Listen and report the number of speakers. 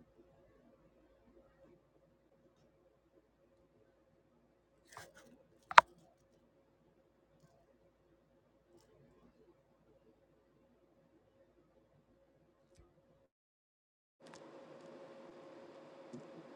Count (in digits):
0